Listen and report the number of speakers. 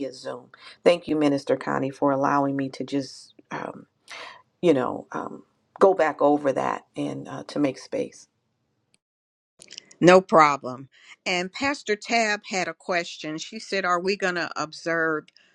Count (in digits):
2